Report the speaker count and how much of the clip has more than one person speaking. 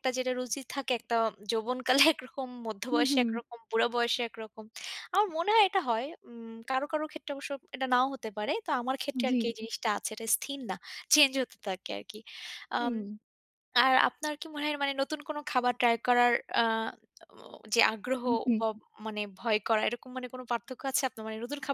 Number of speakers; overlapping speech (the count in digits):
2, about 6%